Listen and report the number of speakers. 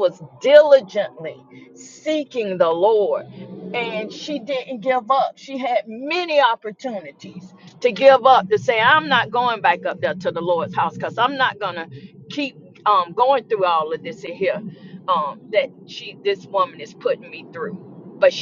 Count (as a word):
one